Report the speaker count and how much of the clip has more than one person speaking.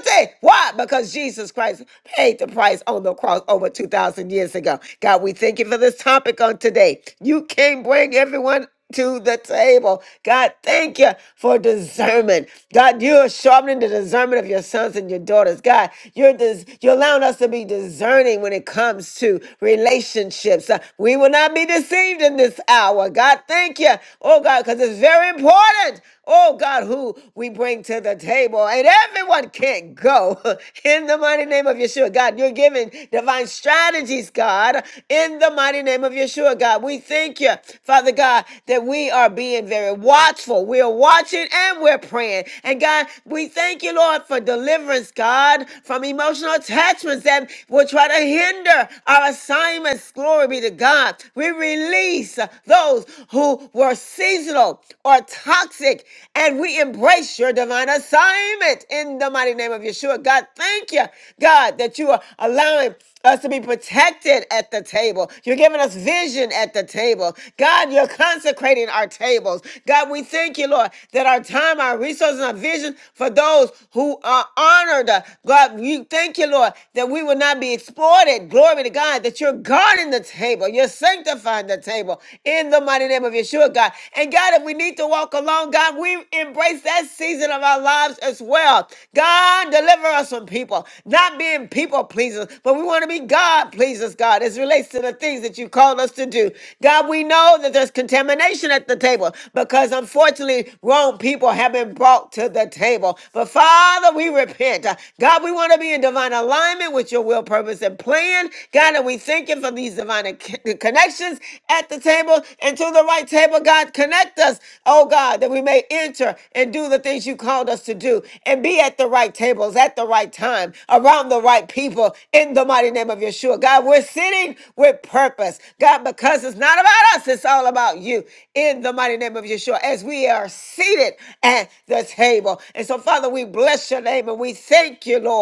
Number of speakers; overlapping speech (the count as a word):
one, no overlap